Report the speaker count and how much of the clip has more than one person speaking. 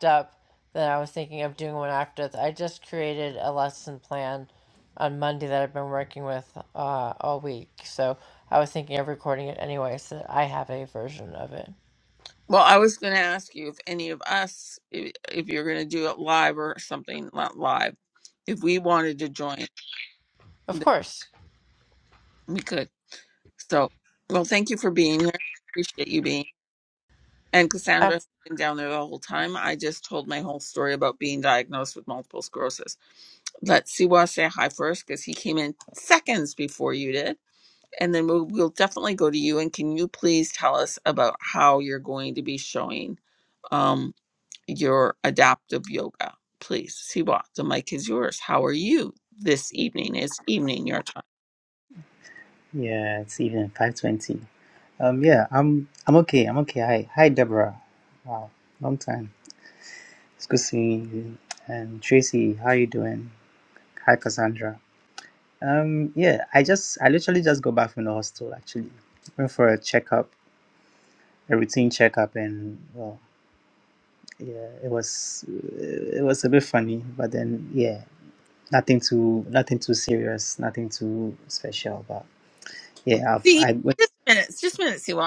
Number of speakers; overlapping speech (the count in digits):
3, under 1%